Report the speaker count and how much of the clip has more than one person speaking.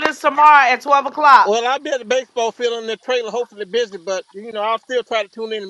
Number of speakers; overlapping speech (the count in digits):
2, about 1%